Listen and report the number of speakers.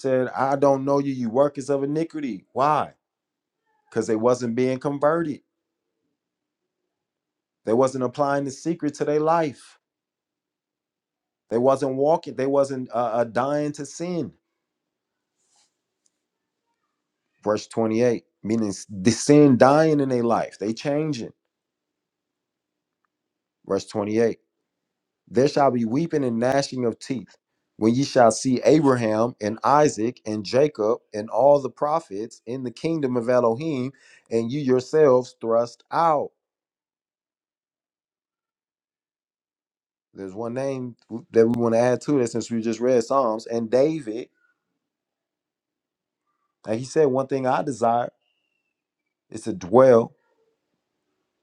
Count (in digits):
1